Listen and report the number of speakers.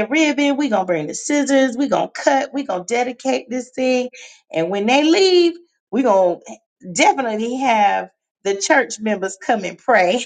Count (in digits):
1